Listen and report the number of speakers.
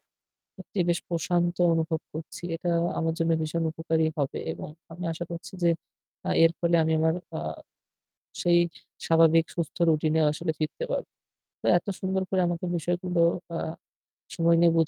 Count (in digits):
1